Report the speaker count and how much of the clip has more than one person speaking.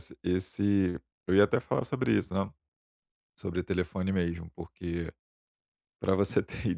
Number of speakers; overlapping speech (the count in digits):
1, no overlap